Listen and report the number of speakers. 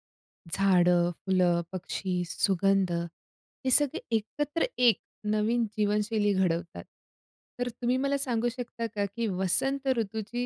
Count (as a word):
one